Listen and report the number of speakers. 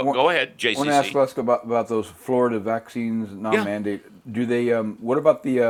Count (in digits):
2